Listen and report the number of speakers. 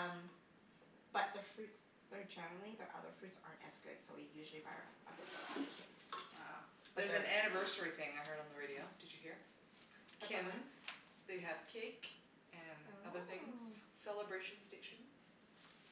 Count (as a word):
two